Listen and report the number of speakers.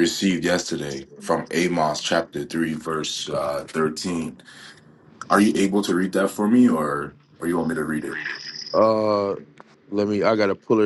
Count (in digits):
2